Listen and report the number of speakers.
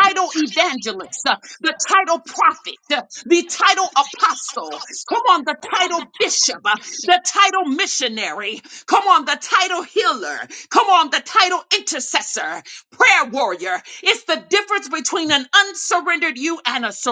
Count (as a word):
one